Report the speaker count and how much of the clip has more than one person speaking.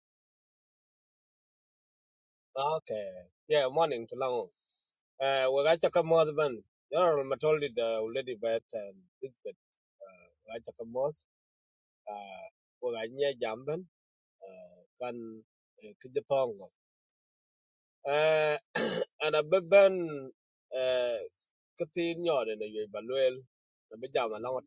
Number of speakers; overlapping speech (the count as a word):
one, no overlap